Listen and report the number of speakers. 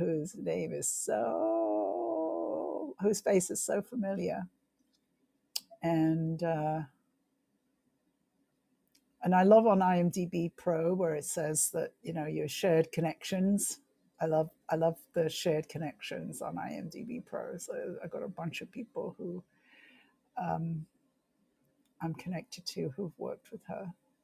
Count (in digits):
1